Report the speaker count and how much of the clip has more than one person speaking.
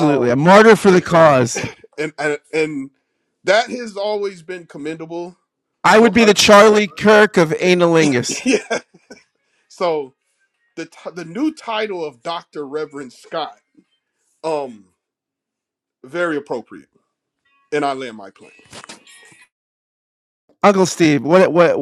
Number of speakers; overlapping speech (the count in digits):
2, about 3%